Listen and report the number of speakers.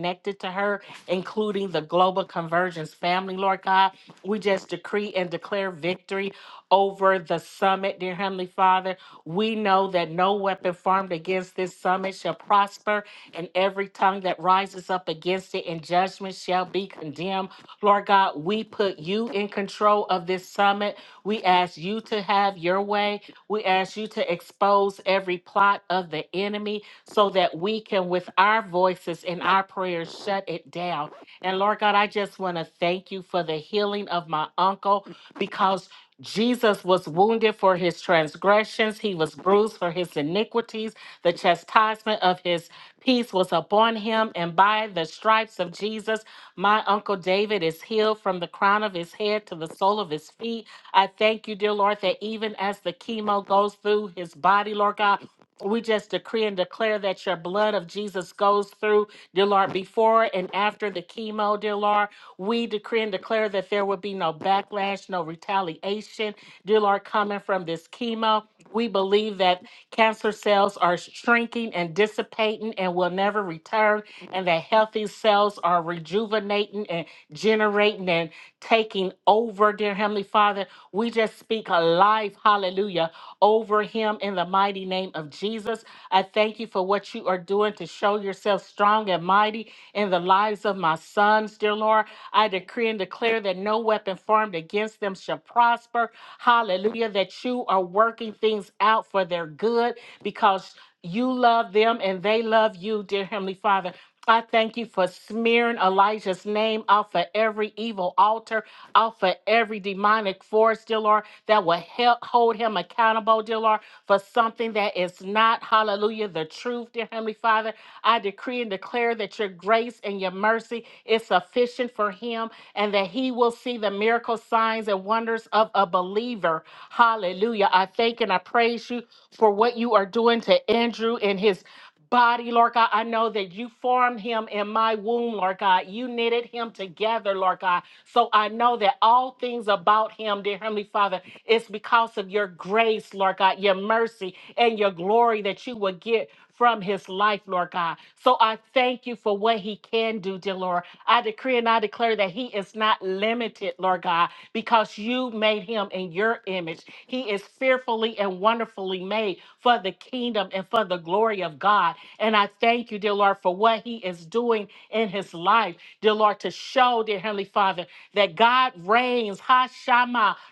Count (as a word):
one